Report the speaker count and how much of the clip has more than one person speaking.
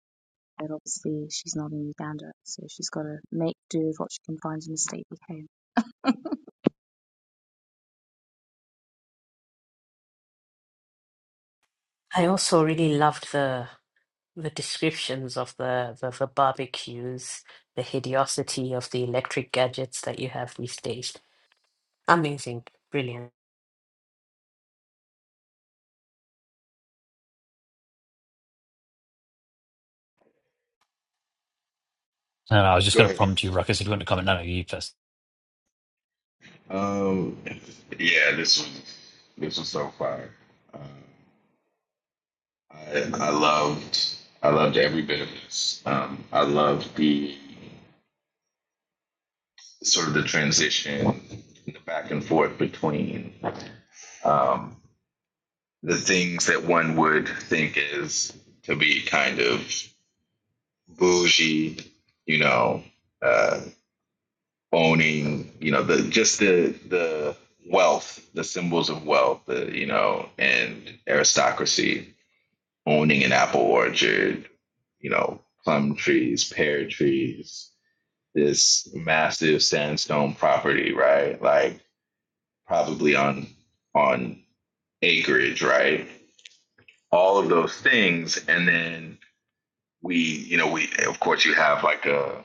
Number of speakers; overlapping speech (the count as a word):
four, under 1%